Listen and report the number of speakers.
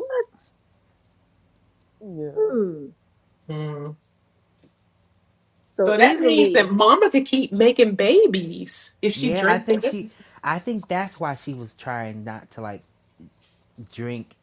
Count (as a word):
three